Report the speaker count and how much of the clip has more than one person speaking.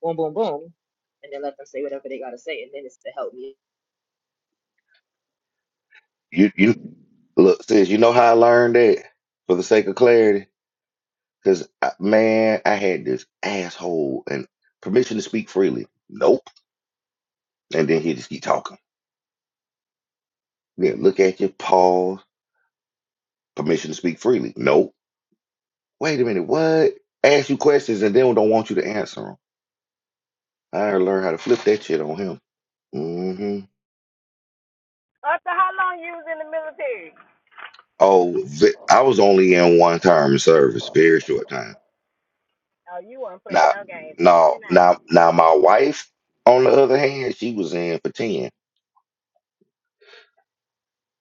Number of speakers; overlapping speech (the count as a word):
three, about 1%